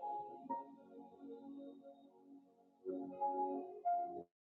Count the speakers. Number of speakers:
0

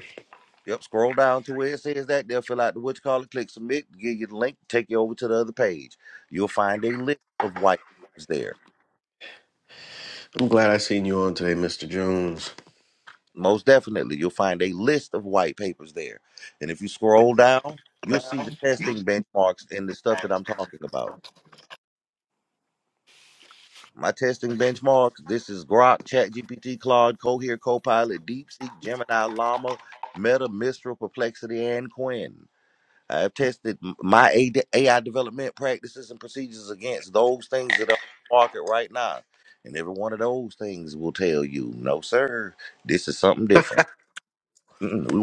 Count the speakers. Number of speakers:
2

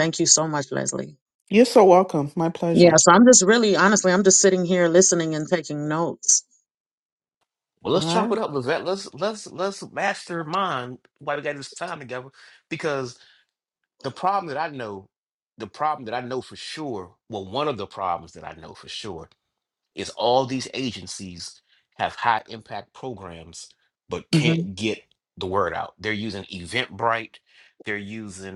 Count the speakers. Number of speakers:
3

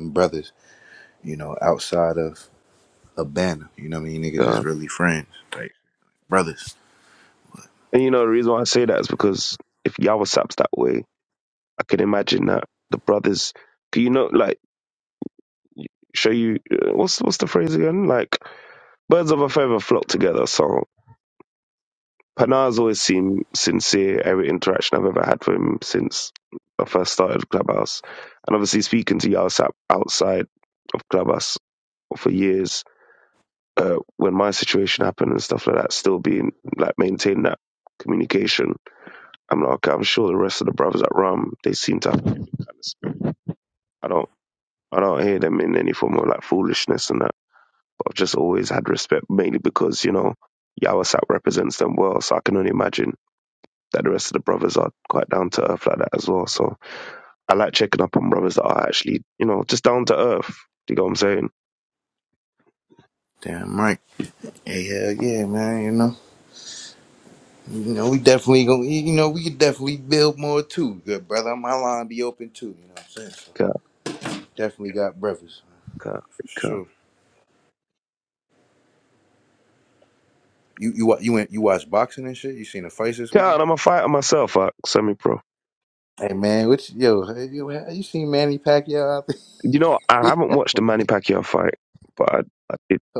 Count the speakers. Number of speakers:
2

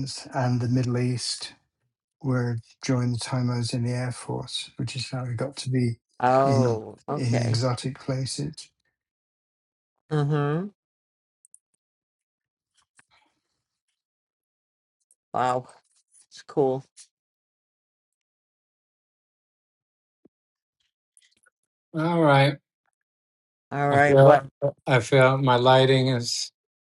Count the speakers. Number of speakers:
3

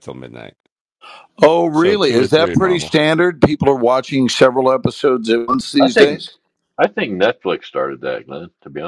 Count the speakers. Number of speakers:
3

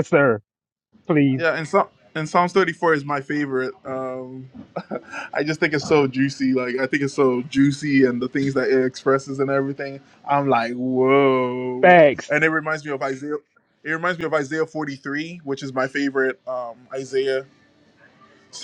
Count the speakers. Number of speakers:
2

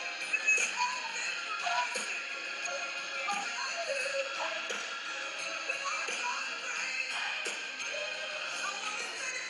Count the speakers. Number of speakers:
0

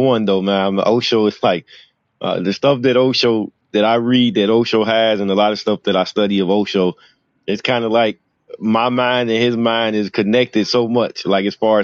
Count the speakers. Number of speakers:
1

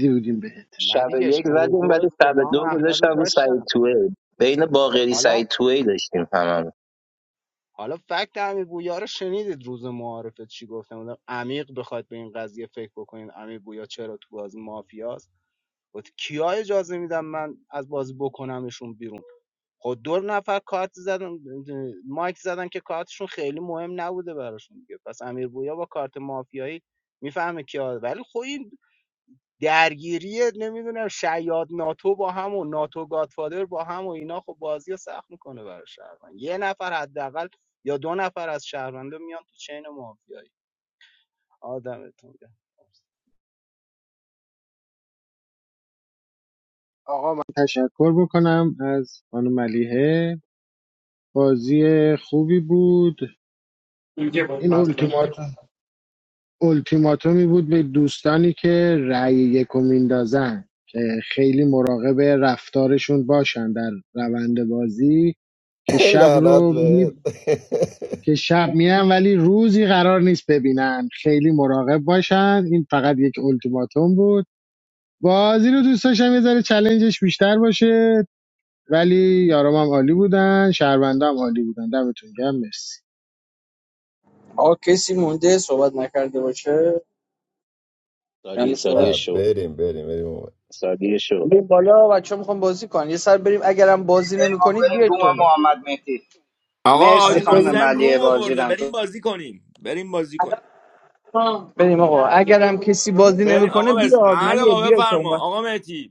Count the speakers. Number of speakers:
7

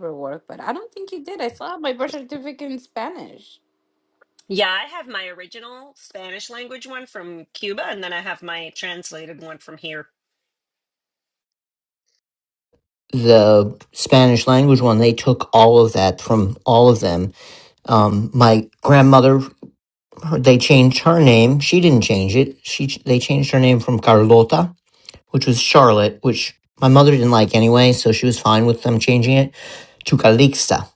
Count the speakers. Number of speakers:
3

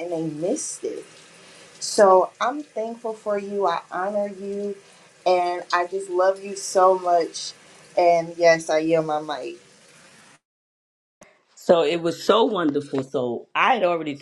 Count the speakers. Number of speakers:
2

